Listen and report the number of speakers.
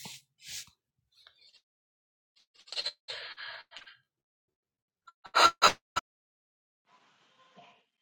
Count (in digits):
0